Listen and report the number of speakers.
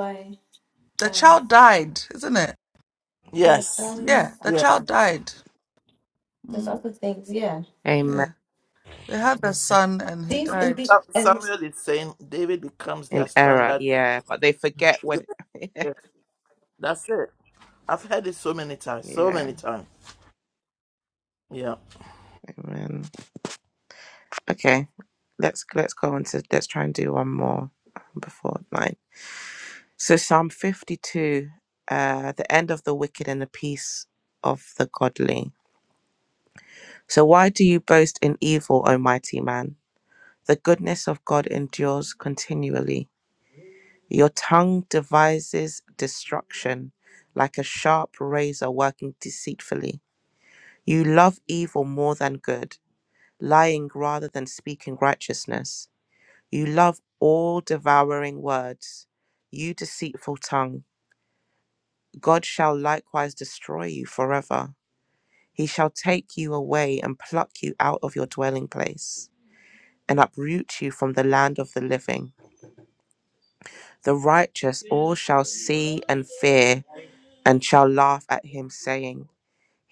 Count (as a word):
four